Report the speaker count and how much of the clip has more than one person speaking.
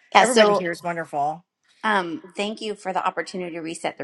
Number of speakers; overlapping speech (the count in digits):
2, about 11%